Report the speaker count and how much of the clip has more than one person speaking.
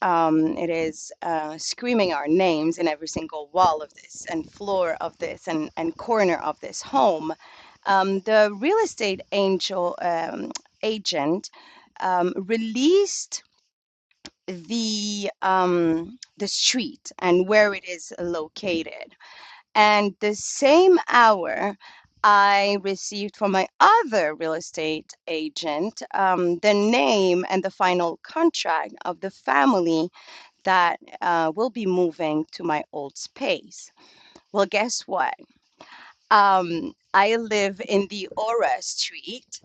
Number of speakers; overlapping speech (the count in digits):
1, no overlap